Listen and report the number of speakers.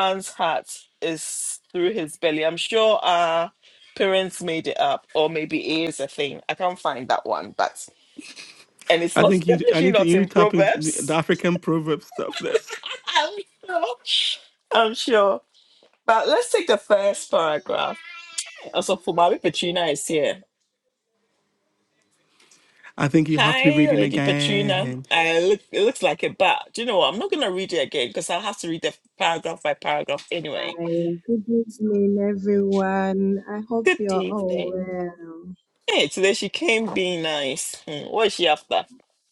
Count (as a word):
three